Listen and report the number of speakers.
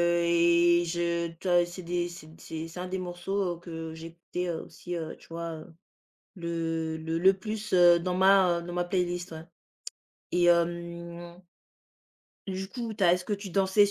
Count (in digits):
1